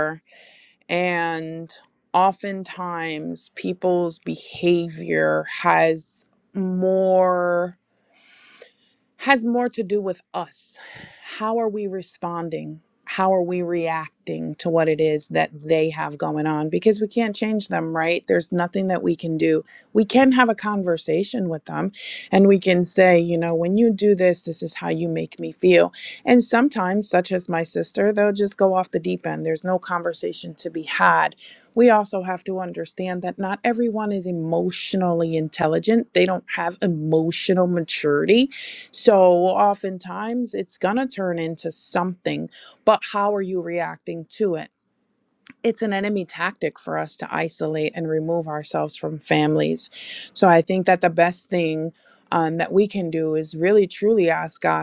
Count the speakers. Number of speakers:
1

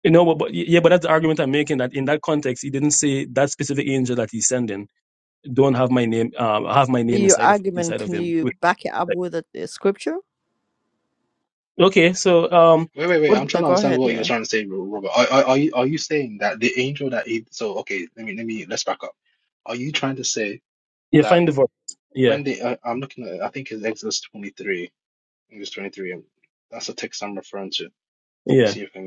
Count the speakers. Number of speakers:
3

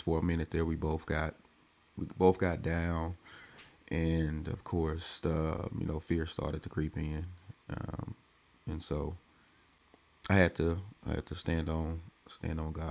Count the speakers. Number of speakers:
1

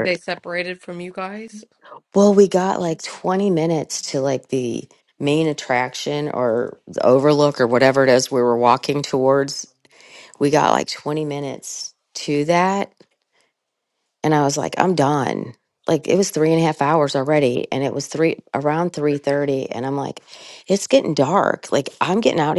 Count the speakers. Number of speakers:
2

